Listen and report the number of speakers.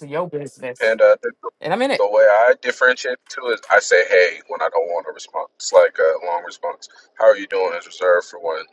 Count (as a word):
two